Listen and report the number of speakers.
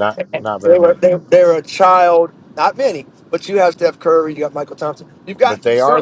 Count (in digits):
2